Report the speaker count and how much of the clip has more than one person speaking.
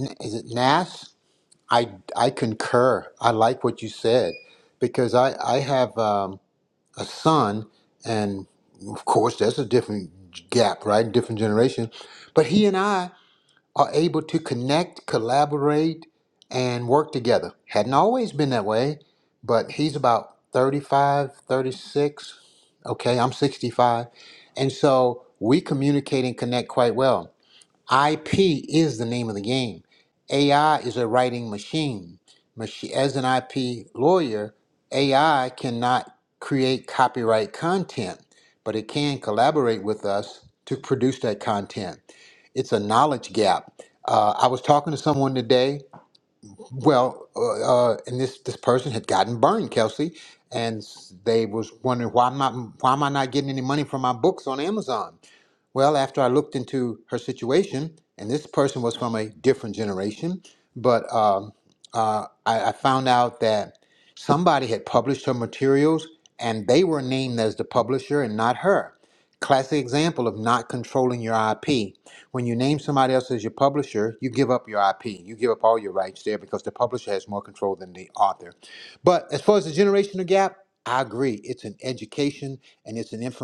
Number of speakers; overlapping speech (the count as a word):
one, no overlap